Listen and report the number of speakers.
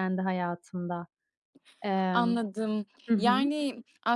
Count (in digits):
2